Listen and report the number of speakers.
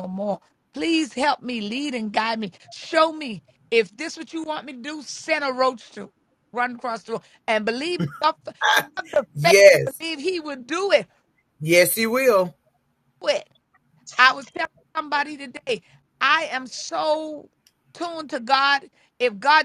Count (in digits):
2